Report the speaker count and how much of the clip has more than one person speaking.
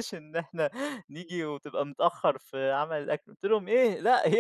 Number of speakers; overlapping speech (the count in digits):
1, no overlap